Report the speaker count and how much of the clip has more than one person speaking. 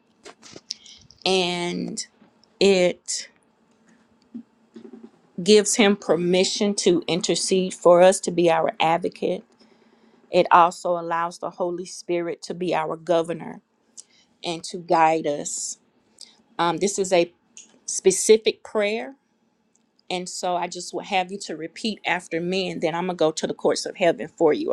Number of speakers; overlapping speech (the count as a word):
one, no overlap